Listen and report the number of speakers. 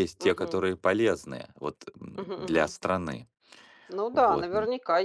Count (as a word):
two